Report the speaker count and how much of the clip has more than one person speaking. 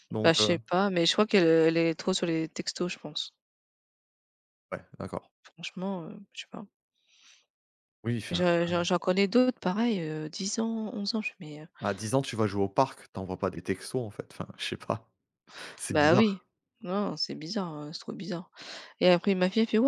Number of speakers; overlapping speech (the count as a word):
two, about 7%